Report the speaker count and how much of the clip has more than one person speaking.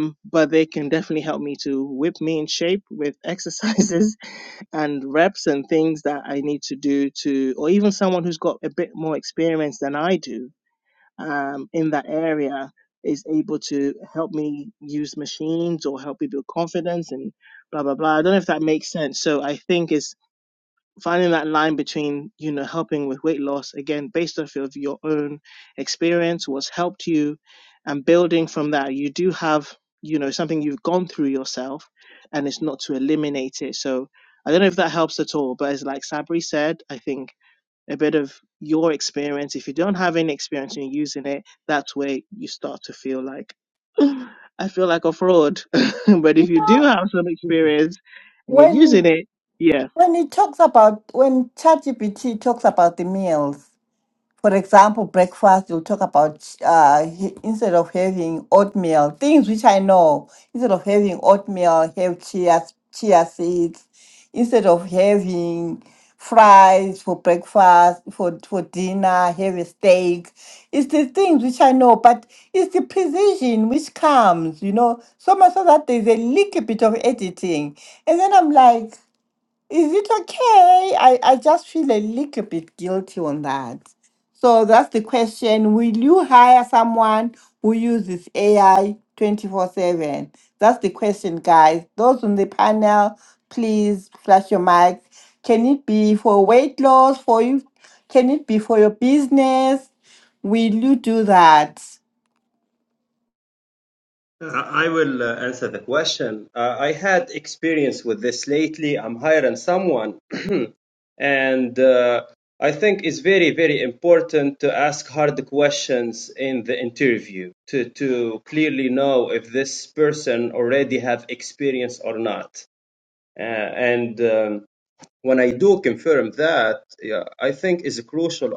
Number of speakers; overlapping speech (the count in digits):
3, under 1%